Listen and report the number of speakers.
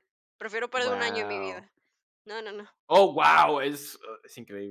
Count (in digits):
2